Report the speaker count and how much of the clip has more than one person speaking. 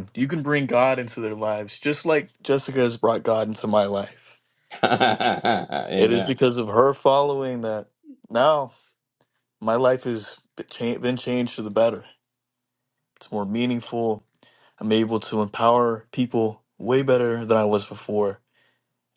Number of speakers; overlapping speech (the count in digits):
2, no overlap